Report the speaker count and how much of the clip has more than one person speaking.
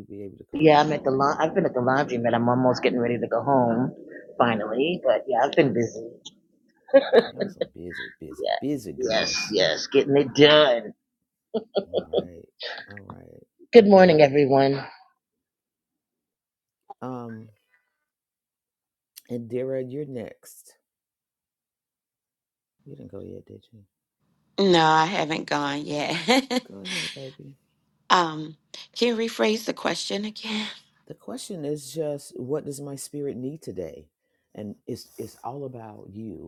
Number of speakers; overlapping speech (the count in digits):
3, about 4%